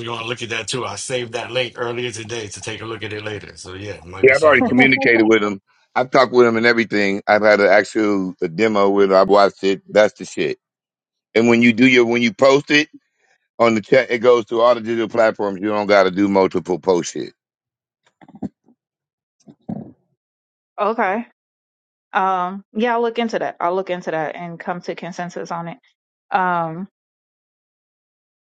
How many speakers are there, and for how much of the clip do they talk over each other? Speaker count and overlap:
3, about 3%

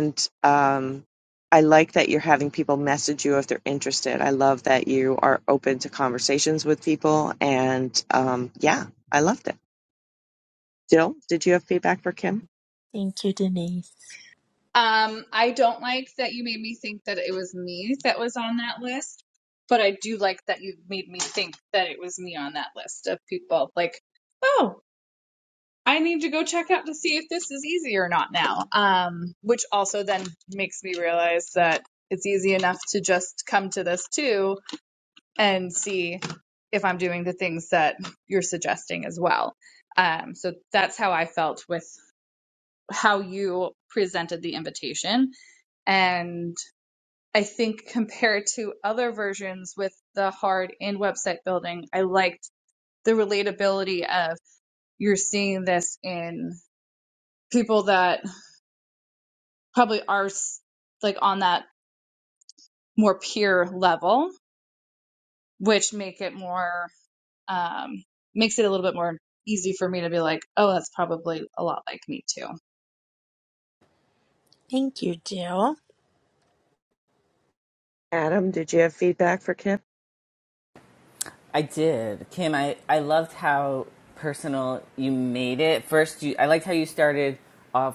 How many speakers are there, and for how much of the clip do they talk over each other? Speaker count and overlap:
4, no overlap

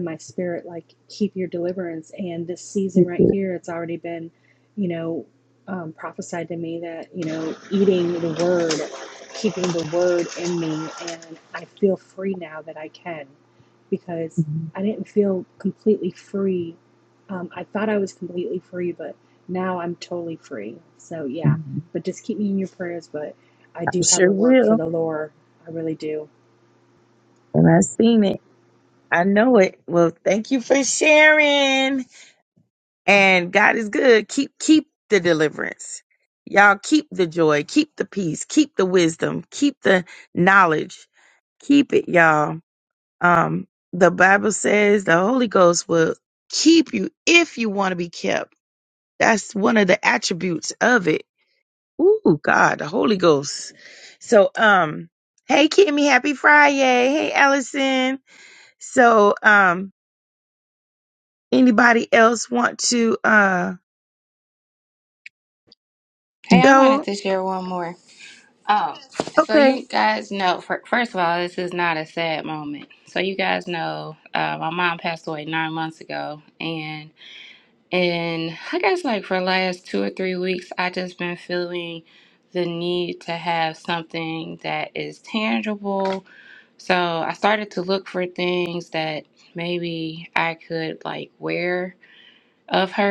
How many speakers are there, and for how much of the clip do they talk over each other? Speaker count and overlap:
3, about 2%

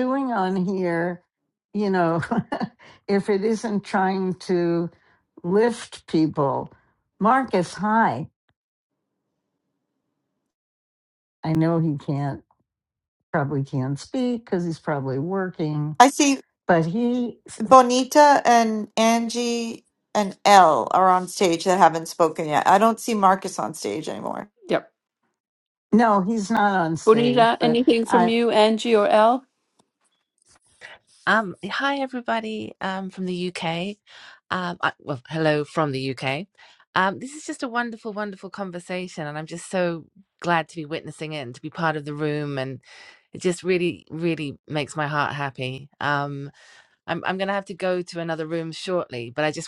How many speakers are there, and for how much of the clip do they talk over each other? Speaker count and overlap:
4, about 3%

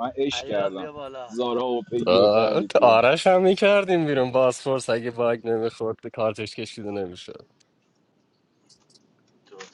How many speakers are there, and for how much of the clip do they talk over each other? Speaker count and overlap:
3, about 16%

